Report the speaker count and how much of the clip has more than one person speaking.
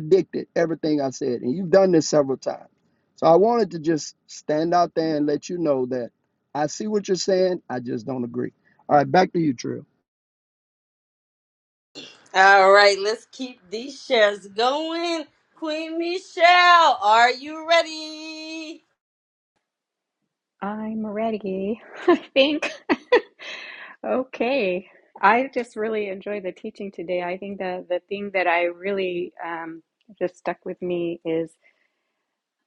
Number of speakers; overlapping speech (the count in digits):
3, no overlap